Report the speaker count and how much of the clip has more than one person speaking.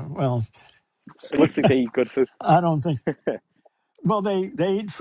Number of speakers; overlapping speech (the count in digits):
2, no overlap